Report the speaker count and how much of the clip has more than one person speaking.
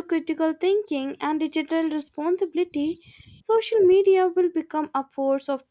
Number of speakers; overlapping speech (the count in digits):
1, no overlap